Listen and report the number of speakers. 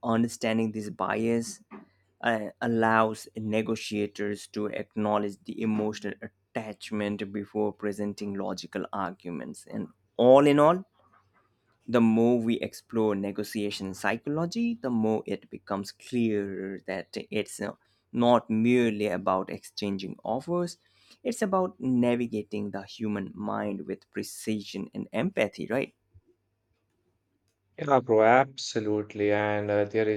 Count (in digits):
2